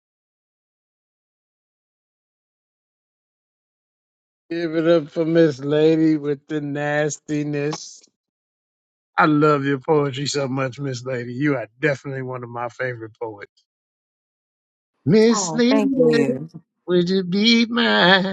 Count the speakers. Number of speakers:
2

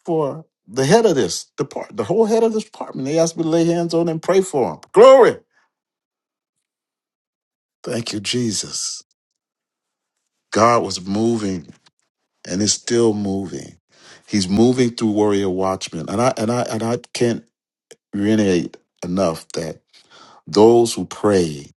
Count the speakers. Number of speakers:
1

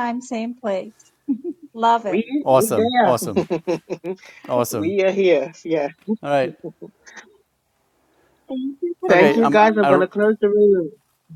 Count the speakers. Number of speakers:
3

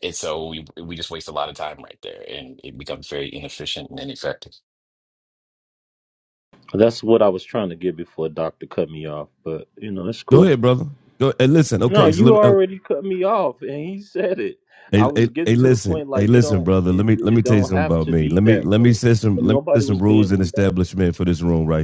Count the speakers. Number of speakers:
3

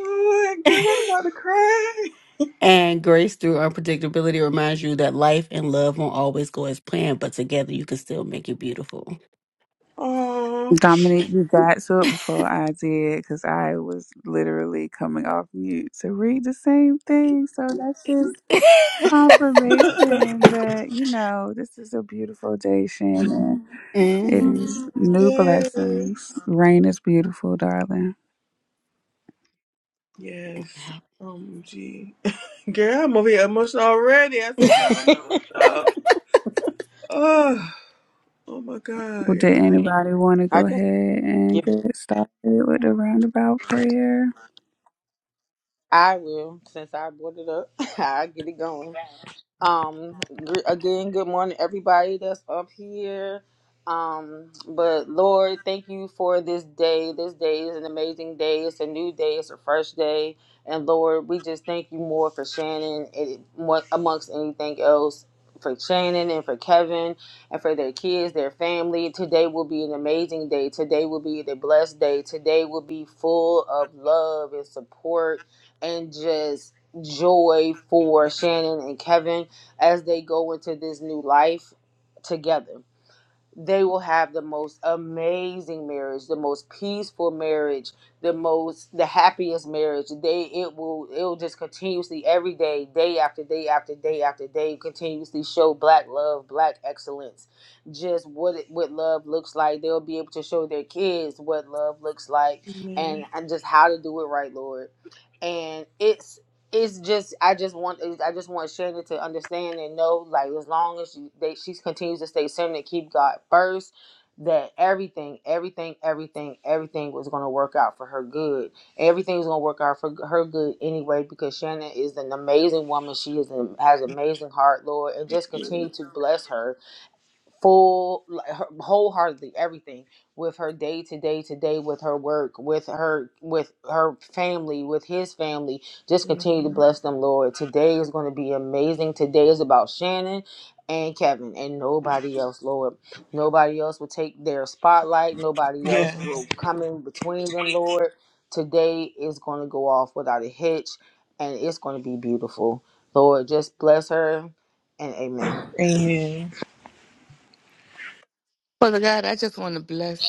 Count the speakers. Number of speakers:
5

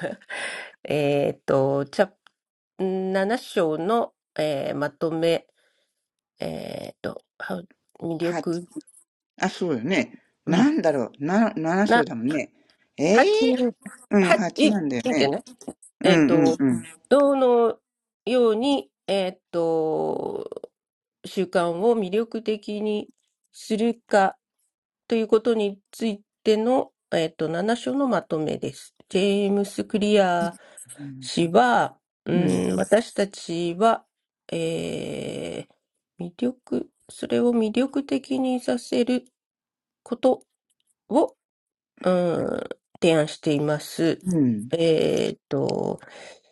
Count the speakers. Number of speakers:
2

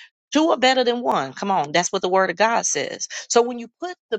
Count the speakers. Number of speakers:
1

